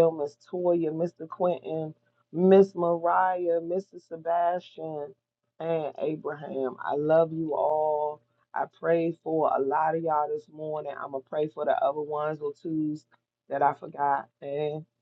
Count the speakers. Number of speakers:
1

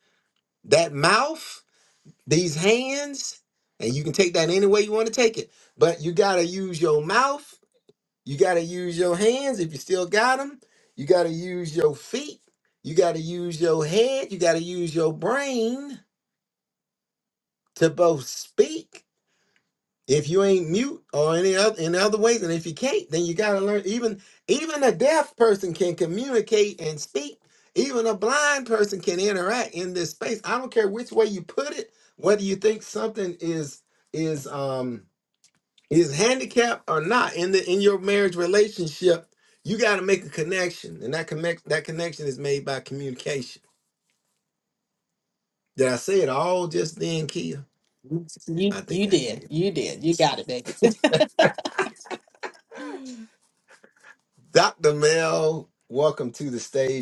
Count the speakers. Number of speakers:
2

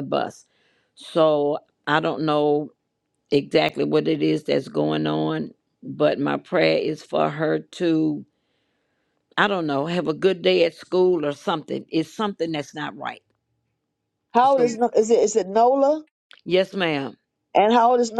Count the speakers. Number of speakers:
2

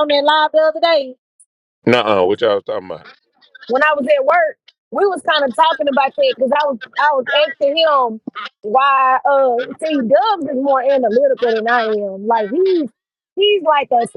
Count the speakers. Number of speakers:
2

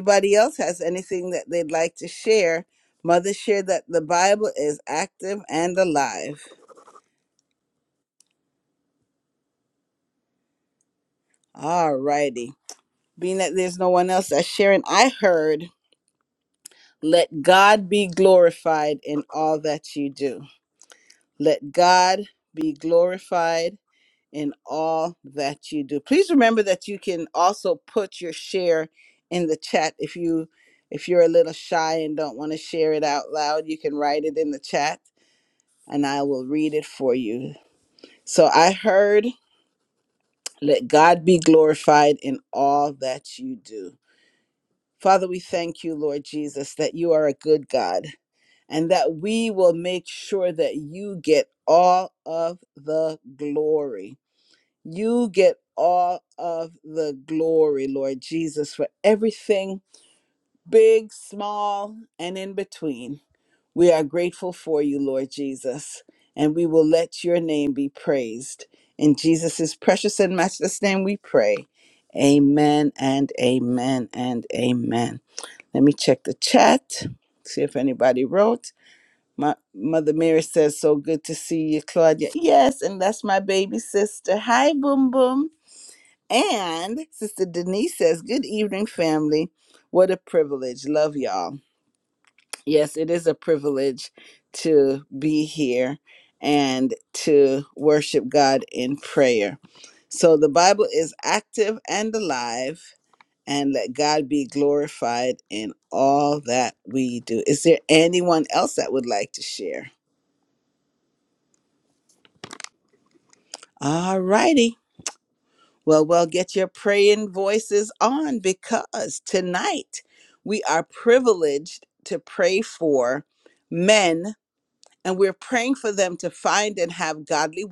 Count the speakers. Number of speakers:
1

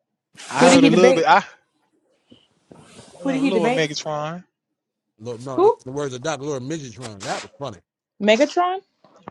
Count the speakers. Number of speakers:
3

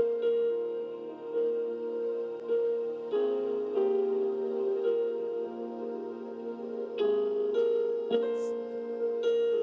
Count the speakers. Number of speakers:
0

